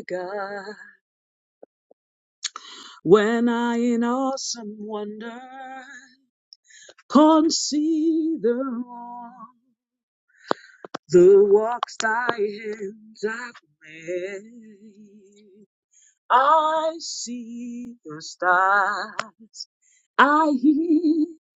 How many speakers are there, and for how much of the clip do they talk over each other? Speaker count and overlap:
1, no overlap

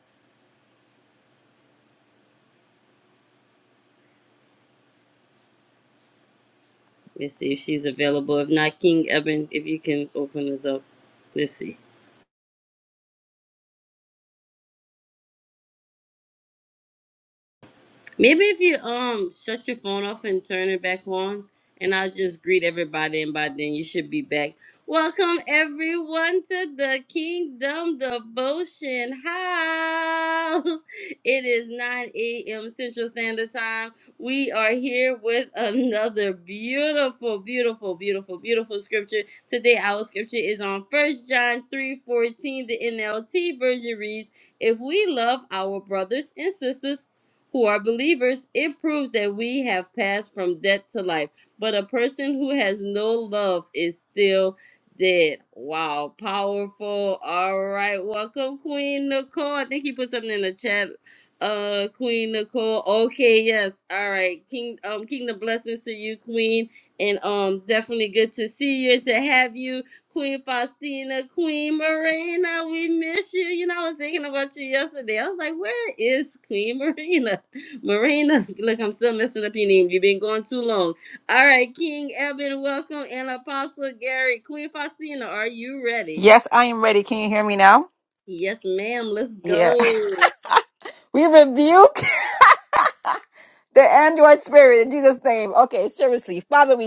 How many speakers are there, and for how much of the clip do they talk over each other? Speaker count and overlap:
2, under 1%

